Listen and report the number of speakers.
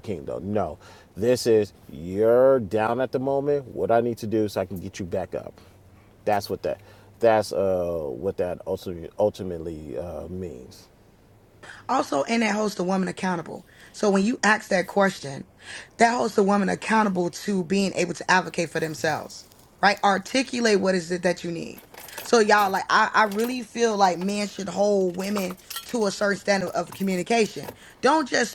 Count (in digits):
2